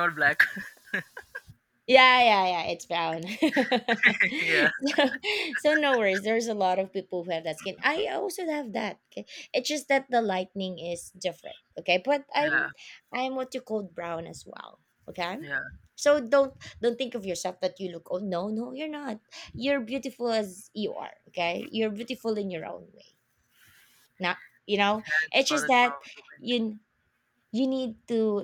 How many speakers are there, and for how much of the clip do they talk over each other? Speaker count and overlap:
2, about 4%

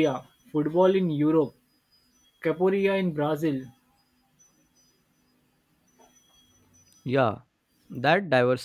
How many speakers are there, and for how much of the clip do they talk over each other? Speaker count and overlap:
2, no overlap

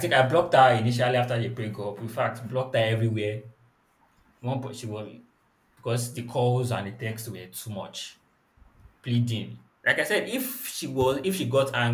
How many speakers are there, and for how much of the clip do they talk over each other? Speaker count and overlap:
1, no overlap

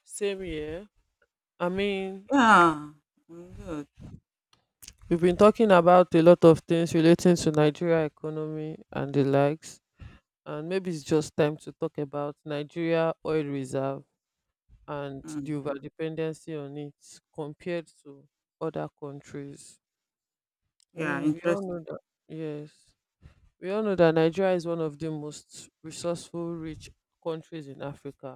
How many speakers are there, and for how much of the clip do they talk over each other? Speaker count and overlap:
2, about 3%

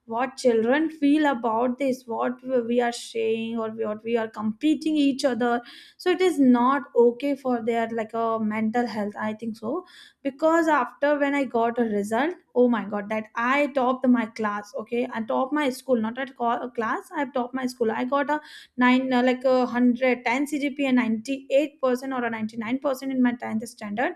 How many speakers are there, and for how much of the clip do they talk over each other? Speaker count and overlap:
1, no overlap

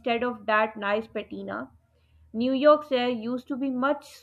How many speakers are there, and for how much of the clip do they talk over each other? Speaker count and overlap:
1, no overlap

